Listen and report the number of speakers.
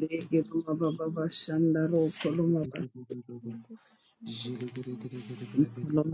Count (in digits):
3